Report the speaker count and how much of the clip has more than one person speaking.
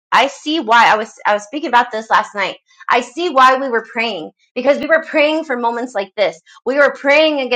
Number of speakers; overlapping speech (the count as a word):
one, no overlap